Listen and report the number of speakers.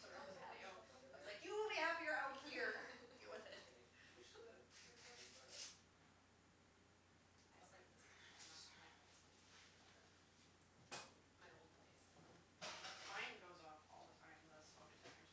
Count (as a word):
three